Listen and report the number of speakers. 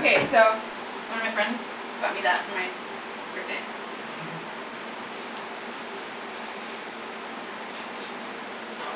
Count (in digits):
1